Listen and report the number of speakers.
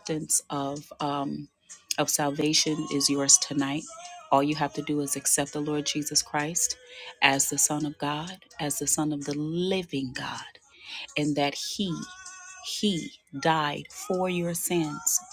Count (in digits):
1